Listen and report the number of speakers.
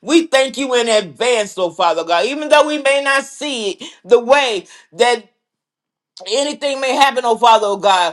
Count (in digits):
1